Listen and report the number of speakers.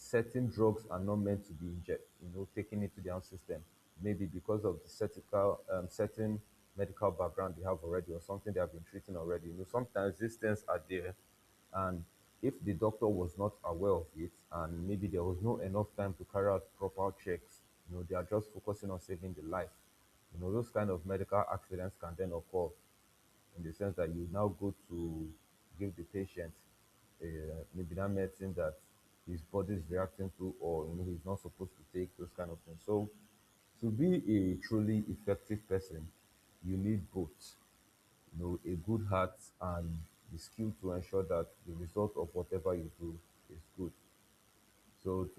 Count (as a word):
one